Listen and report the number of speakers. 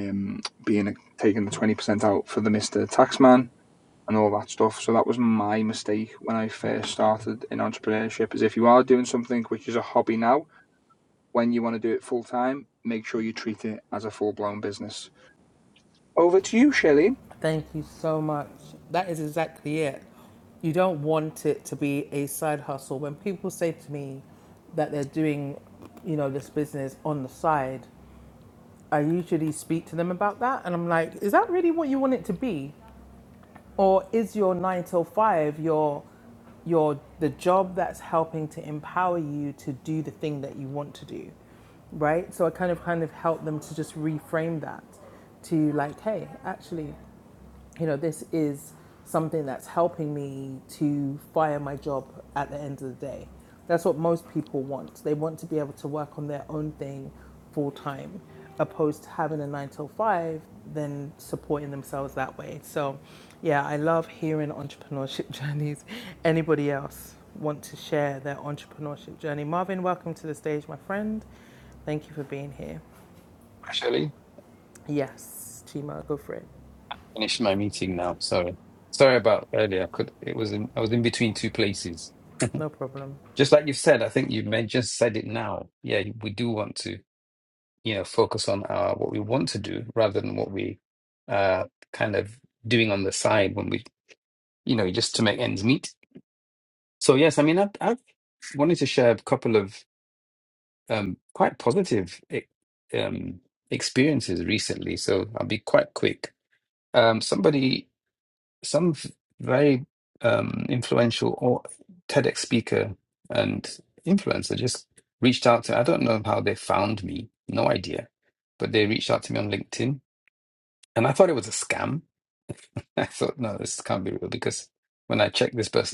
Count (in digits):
3